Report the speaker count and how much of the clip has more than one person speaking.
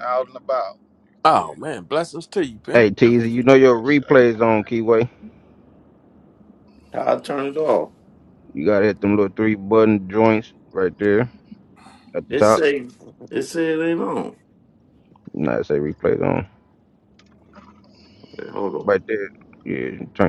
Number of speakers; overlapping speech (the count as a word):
four, about 7%